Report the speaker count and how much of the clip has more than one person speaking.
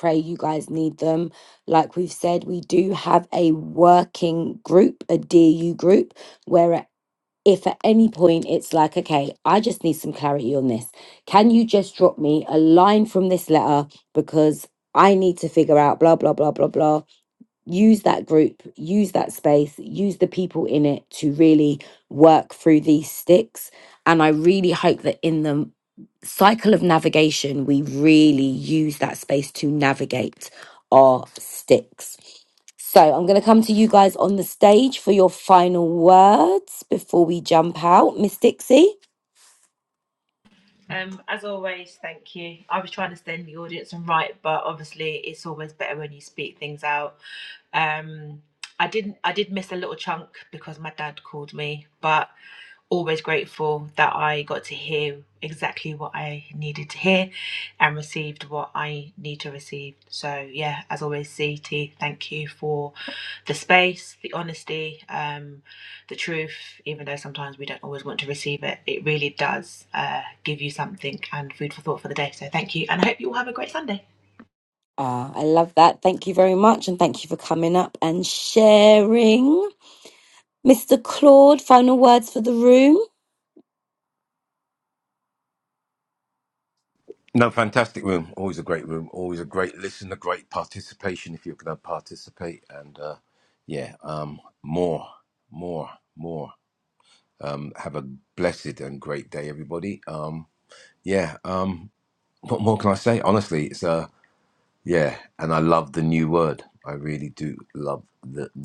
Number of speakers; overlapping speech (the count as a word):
three, no overlap